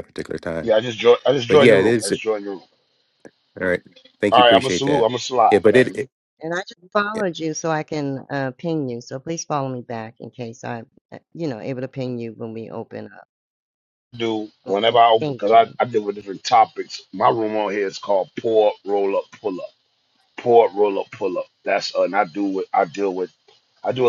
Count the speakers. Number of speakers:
three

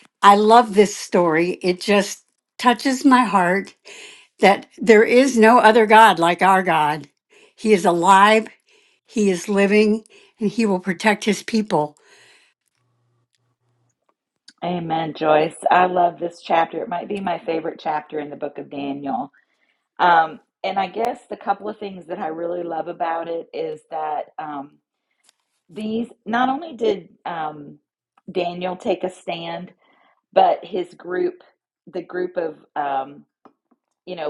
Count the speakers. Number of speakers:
two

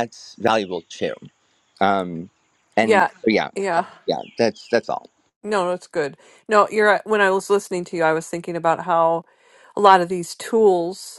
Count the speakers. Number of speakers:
two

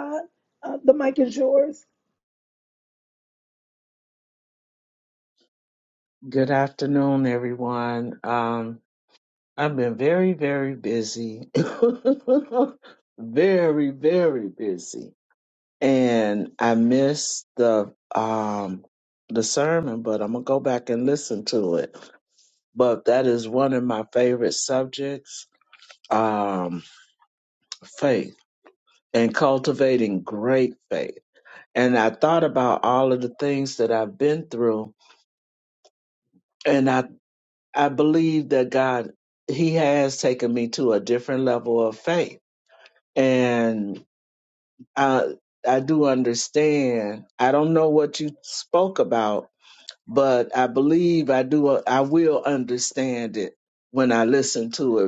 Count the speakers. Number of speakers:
two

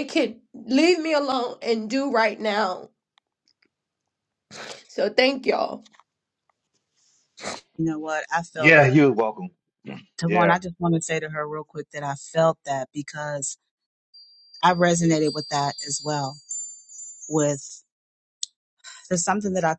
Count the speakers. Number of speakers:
three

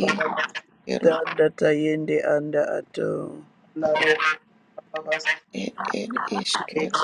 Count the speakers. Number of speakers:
three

